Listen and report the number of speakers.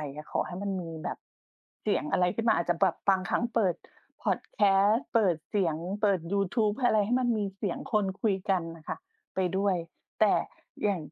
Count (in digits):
1